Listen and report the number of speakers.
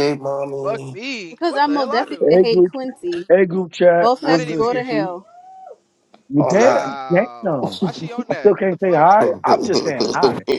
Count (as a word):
four